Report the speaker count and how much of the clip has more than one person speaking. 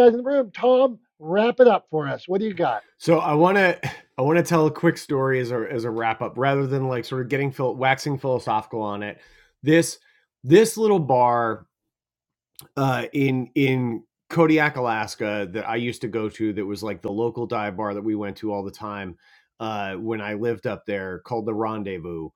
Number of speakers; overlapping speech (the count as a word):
two, no overlap